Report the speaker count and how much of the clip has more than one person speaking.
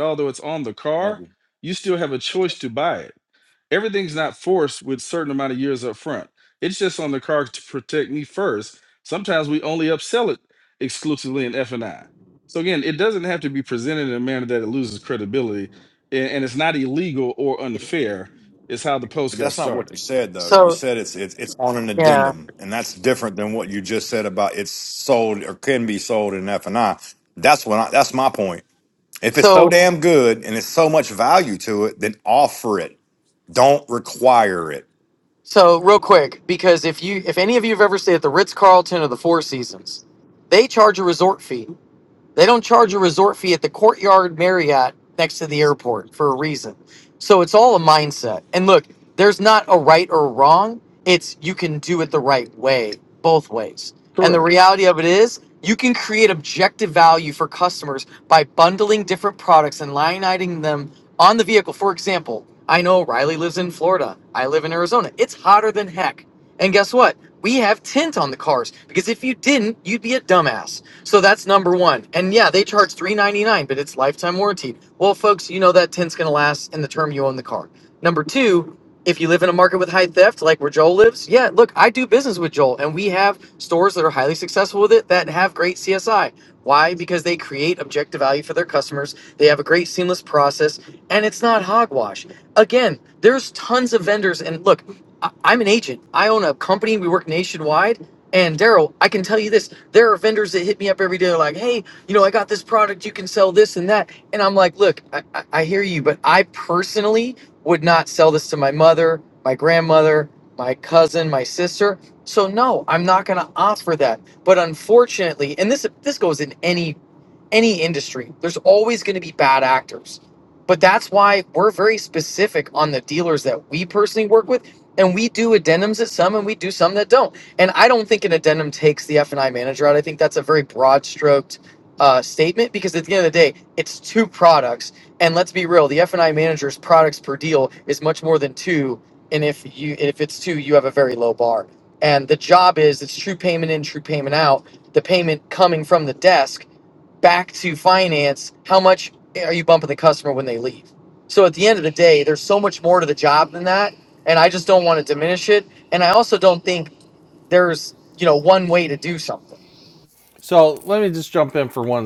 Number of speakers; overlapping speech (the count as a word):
four, about 1%